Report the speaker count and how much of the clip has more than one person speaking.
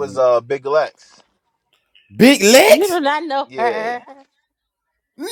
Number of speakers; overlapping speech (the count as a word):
three, about 17%